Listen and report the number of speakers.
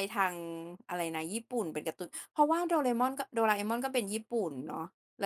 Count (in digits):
1